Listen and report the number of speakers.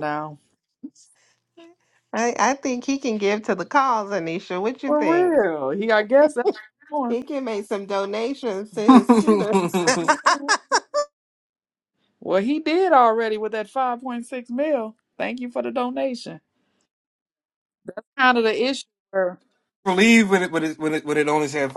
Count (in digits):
3